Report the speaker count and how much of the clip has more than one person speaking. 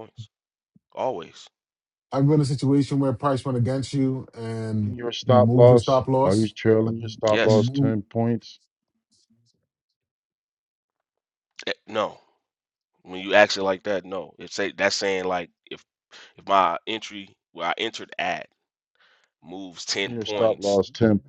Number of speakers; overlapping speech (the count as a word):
three, about 12%